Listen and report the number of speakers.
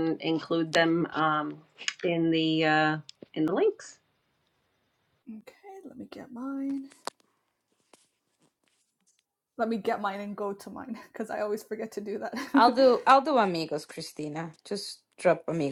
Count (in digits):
3